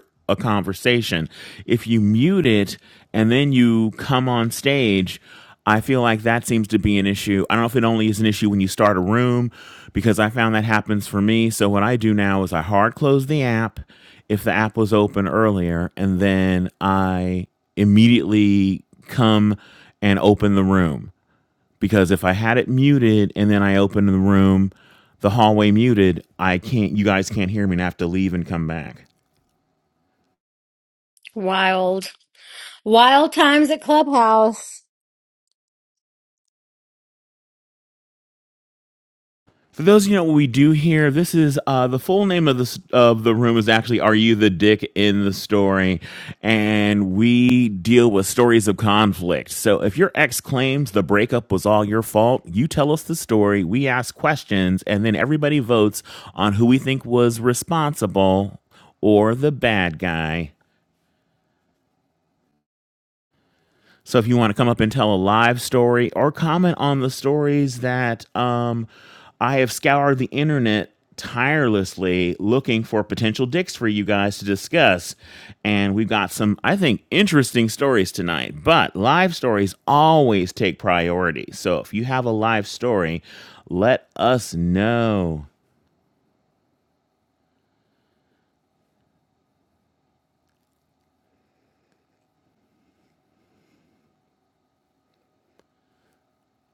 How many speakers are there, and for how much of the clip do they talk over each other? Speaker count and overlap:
two, no overlap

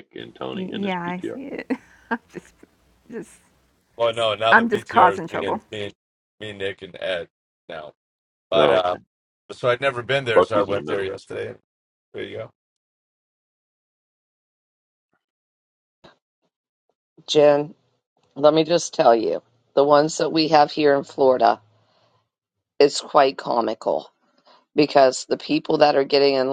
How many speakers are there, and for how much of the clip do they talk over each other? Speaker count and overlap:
four, about 12%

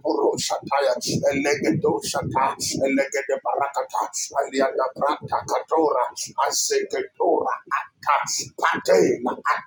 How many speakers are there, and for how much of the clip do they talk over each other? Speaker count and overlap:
one, no overlap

